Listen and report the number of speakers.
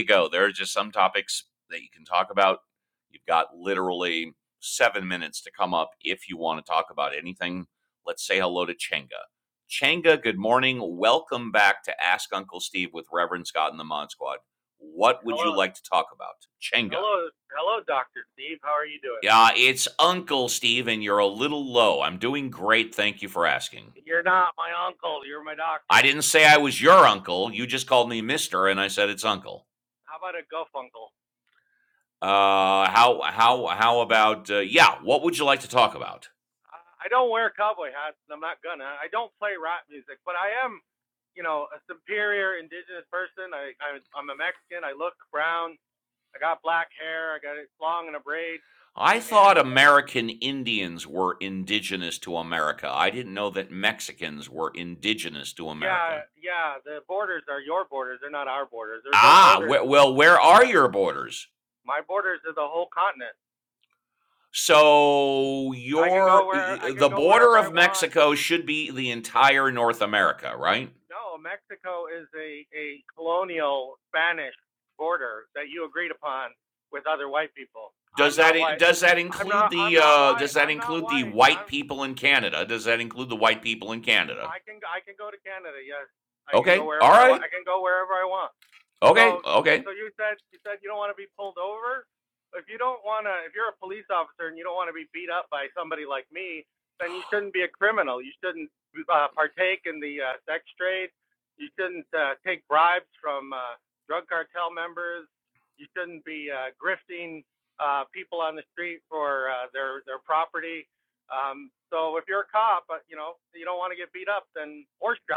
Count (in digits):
2